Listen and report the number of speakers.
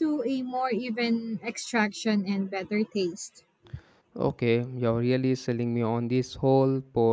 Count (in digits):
2